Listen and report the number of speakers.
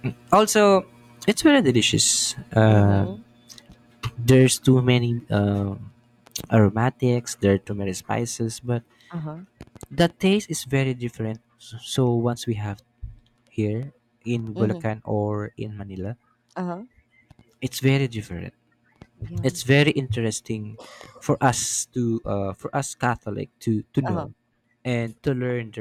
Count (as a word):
two